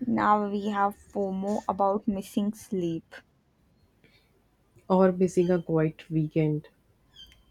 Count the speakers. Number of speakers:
two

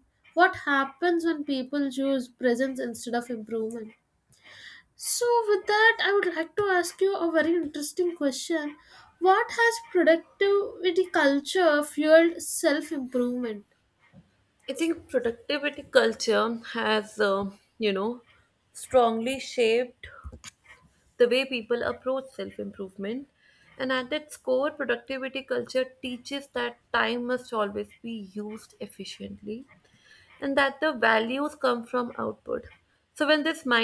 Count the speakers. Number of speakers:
two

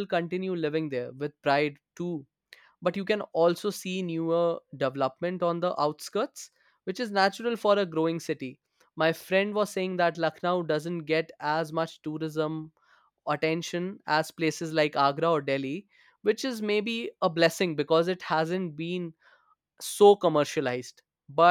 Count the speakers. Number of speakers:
one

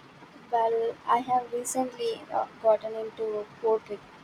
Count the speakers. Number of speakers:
one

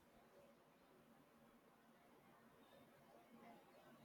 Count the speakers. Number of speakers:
zero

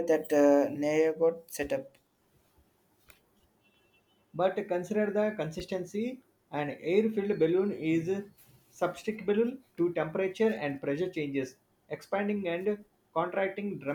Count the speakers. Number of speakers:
two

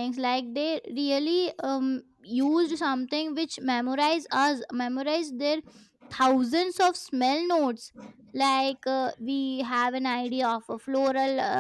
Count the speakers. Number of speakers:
one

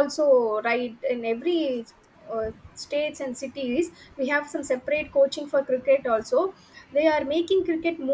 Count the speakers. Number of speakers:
one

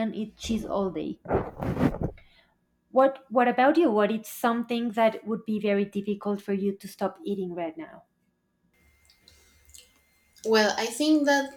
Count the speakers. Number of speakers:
two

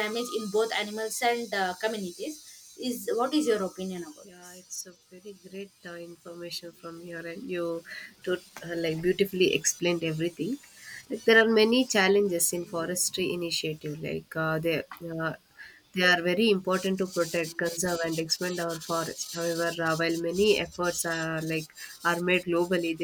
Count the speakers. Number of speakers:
two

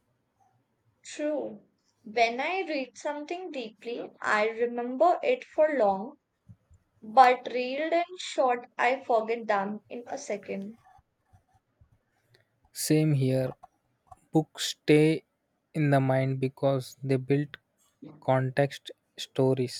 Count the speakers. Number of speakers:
two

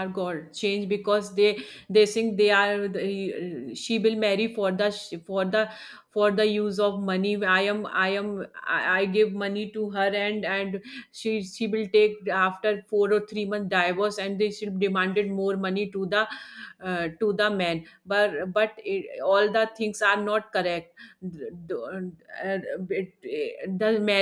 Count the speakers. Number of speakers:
one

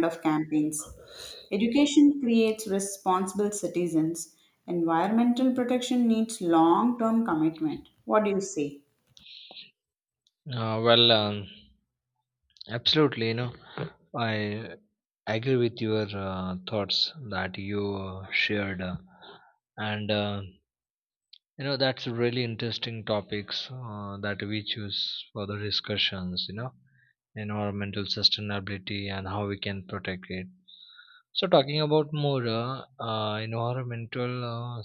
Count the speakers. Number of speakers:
two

